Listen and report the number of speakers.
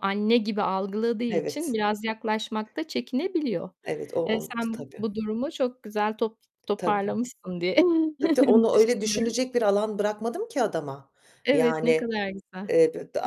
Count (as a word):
two